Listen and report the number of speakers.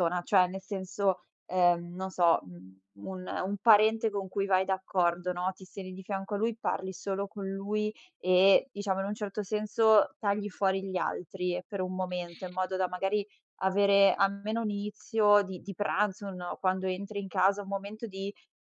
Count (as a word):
one